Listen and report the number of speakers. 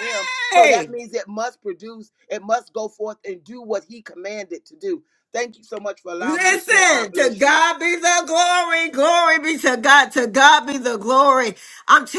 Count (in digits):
2